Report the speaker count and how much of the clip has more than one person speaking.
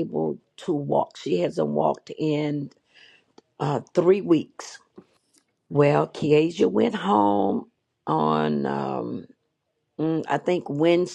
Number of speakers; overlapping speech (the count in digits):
1, no overlap